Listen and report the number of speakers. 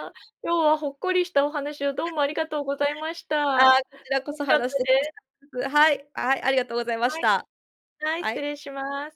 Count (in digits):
2